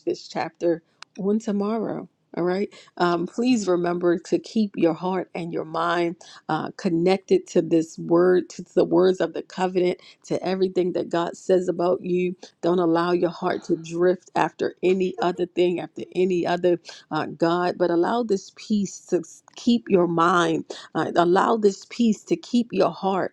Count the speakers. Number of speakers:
1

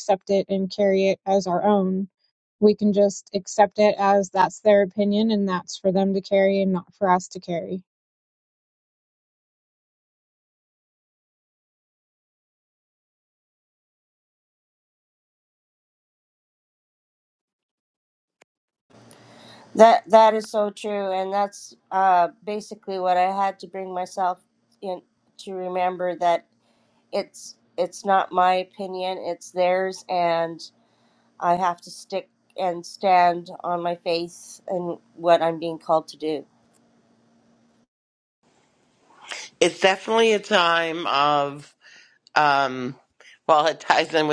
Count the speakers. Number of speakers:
3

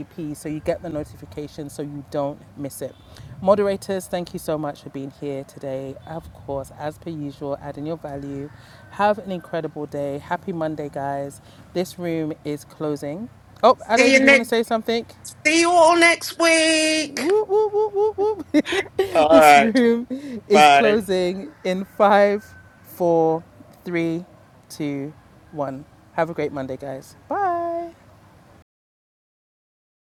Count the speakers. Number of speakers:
2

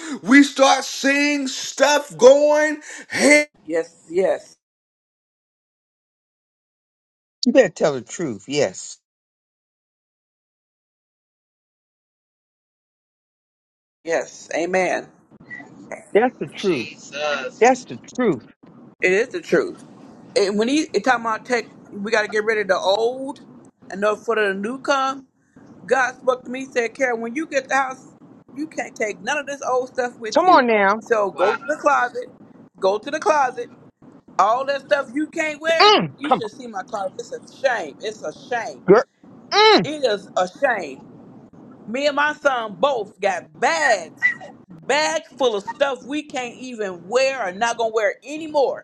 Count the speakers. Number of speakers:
4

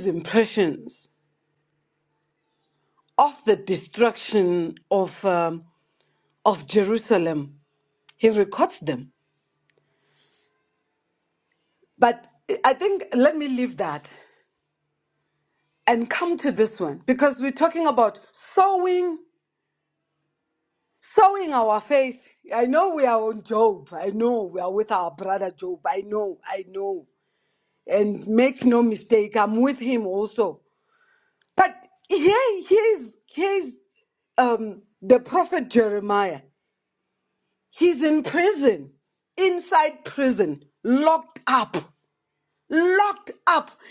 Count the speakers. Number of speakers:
1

